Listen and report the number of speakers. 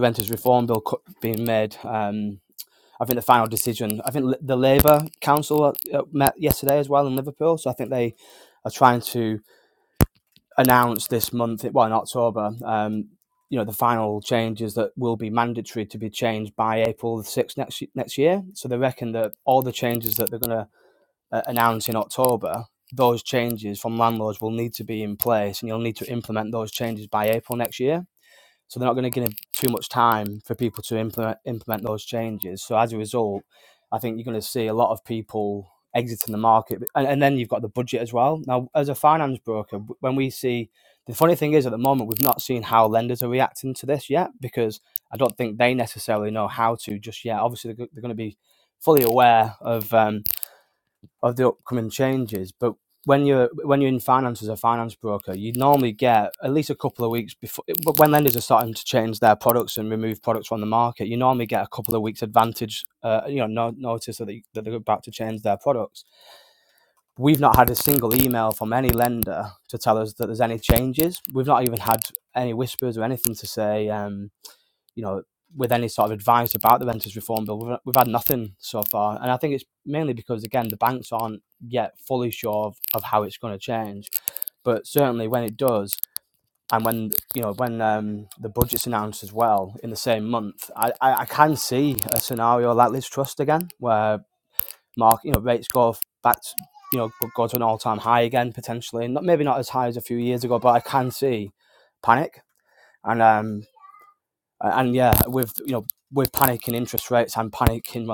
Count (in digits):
1